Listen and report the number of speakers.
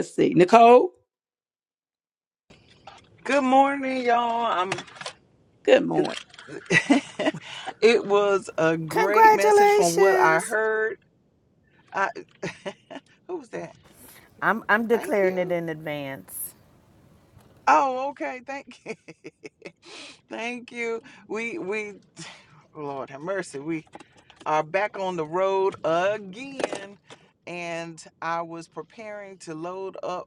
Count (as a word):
three